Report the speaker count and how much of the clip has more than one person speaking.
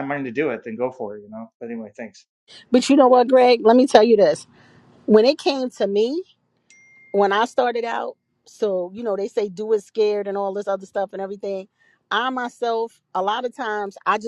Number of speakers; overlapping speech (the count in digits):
2, no overlap